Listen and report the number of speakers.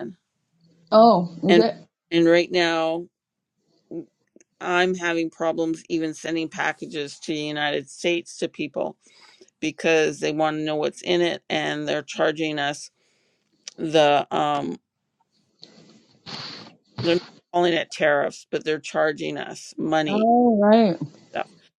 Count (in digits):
2